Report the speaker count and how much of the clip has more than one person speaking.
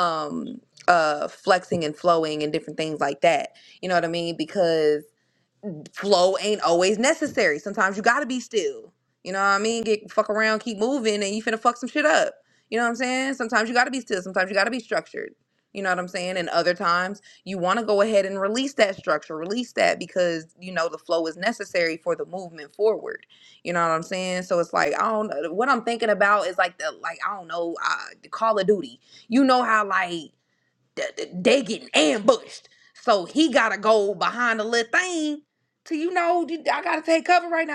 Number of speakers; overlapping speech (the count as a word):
one, no overlap